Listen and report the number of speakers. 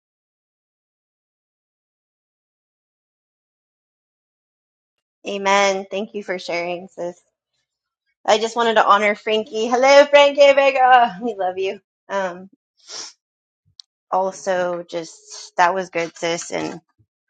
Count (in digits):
1